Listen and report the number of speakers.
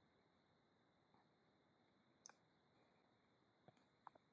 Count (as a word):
zero